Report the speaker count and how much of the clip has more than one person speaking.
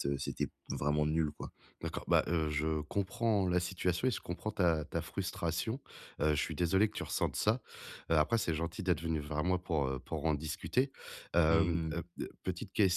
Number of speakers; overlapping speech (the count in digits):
2, about 3%